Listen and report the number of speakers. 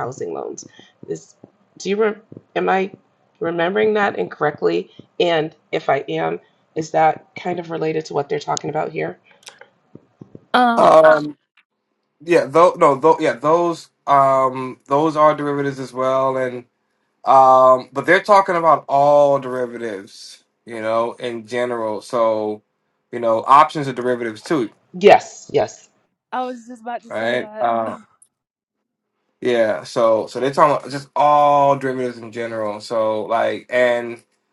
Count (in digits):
3